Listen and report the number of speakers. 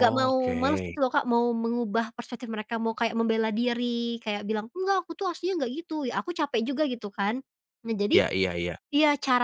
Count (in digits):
2